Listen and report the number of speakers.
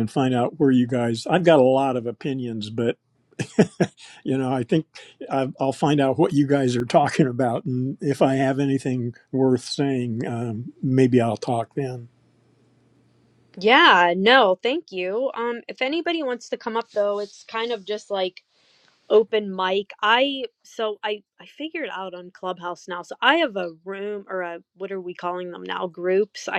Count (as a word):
two